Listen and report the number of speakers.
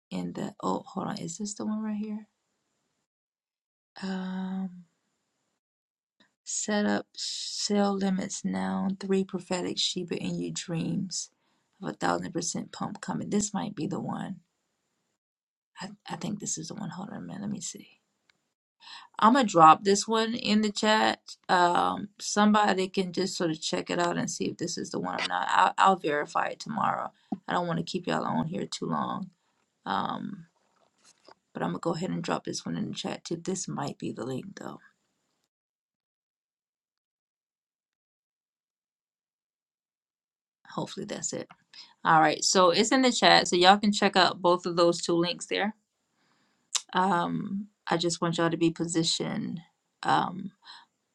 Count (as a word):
one